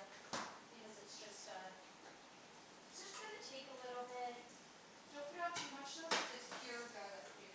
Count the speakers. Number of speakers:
one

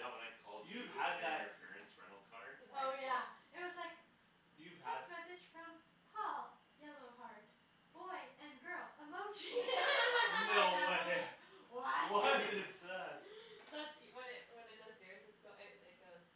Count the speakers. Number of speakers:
four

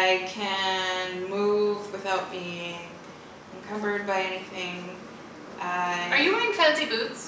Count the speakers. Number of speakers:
two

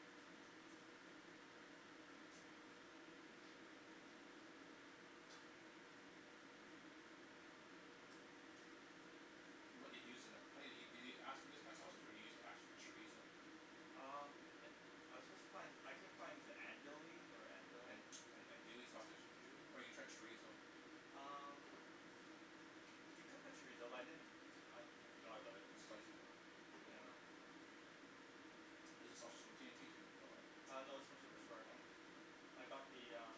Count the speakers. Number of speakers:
two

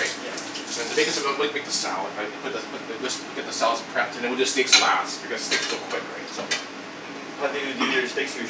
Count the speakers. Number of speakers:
two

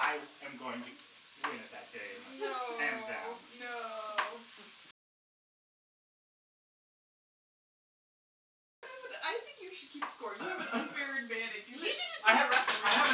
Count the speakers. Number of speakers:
three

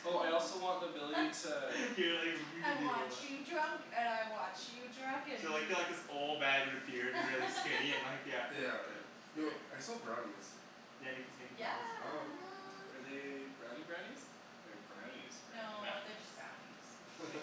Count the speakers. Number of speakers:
four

